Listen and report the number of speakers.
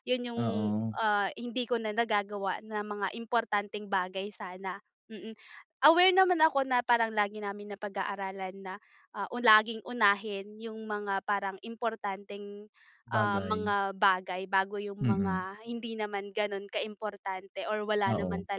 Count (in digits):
2